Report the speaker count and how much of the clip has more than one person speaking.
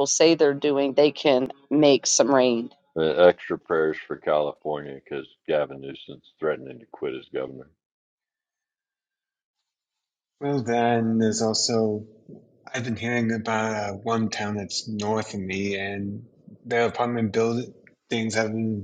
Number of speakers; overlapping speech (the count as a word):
three, no overlap